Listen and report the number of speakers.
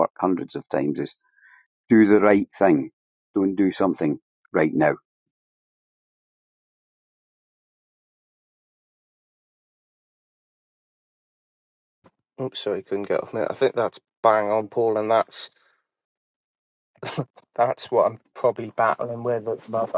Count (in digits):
2